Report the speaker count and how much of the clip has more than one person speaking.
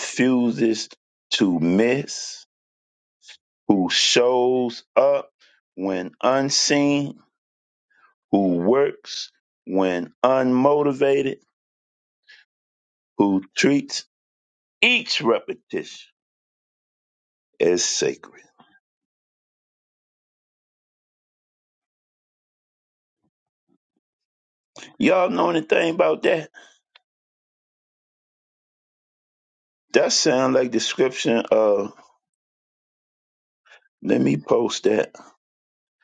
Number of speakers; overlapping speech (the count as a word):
one, no overlap